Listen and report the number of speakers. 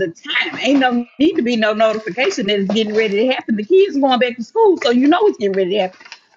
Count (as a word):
one